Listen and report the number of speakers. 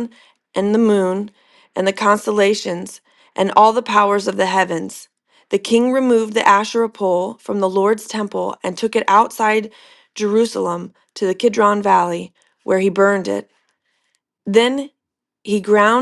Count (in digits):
1